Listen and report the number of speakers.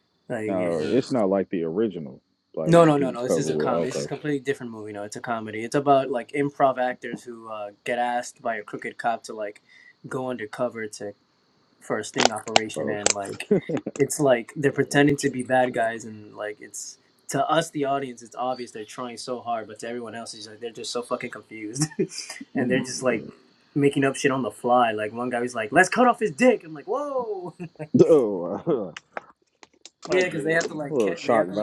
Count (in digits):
2